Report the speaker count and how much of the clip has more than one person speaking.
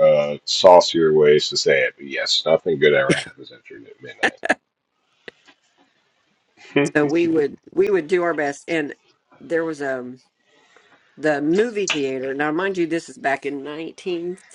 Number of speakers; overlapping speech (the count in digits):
2, no overlap